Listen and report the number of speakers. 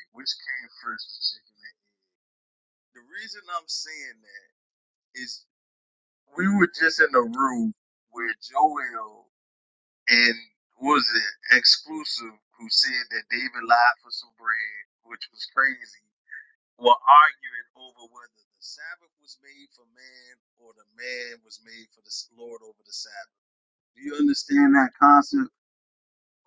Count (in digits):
1